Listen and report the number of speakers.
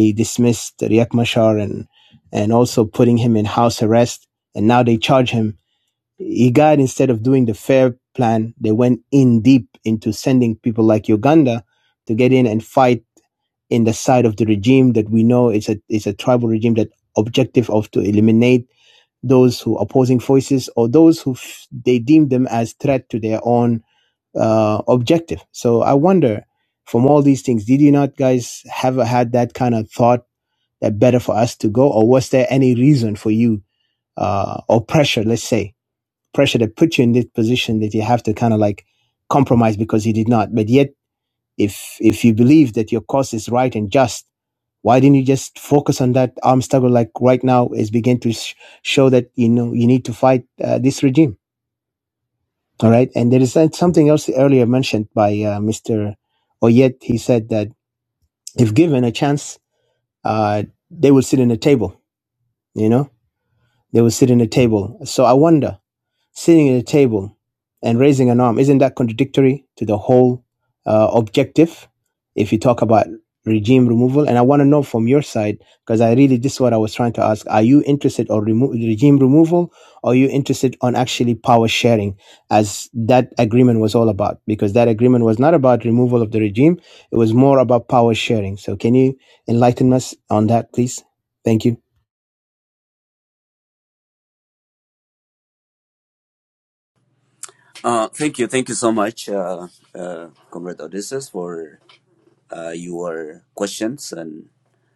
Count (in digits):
2